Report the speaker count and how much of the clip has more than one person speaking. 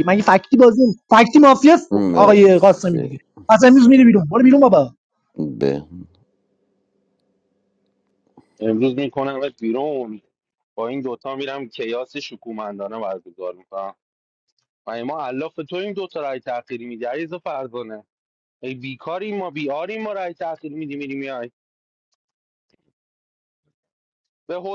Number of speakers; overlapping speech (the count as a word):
three, about 3%